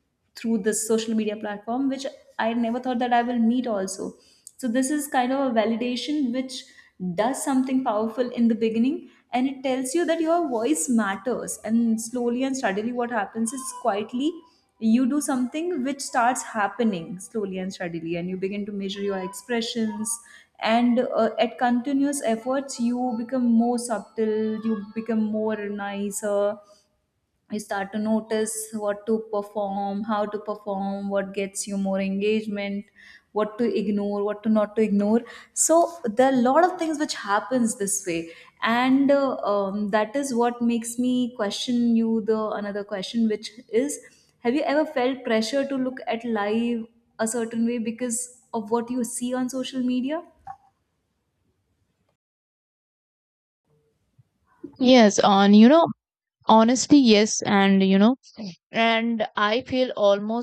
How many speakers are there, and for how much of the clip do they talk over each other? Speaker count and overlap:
2, no overlap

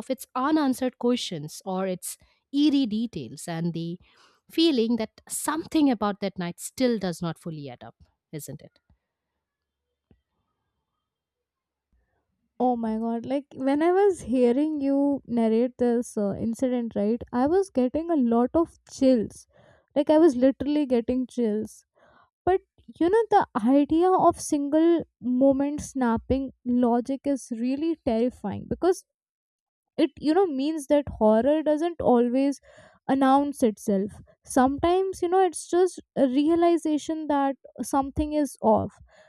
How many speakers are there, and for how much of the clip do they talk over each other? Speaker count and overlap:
2, no overlap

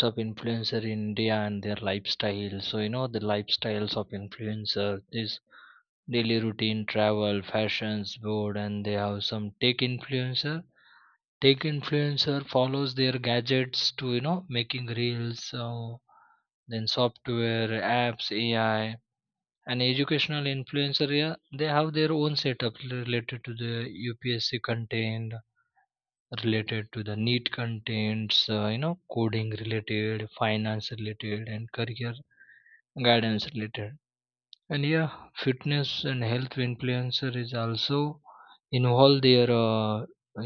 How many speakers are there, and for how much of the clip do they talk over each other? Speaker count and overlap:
1, no overlap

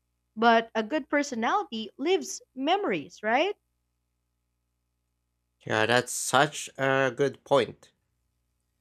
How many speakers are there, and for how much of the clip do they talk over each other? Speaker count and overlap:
2, no overlap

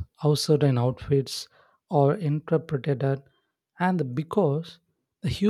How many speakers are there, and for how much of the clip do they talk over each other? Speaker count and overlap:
1, no overlap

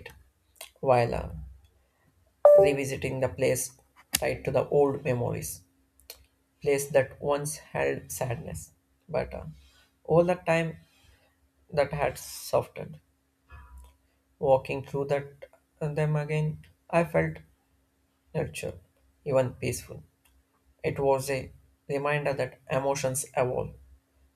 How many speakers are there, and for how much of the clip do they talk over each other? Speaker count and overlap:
1, no overlap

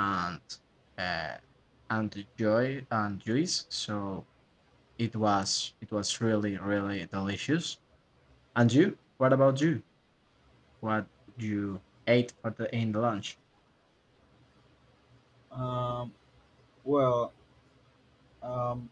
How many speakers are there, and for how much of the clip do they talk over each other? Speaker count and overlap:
2, no overlap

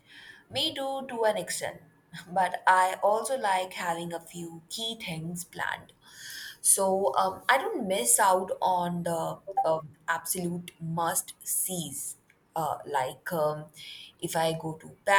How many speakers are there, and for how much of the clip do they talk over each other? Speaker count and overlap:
1, no overlap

